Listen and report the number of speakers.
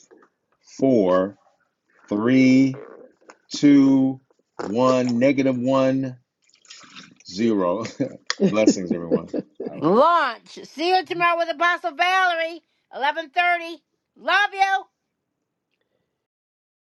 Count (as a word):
two